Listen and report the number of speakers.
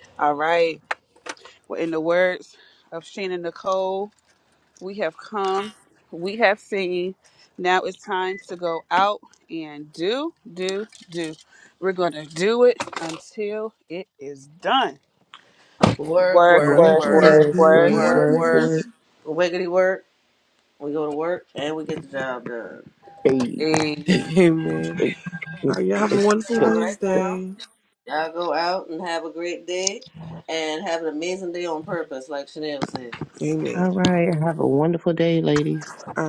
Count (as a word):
four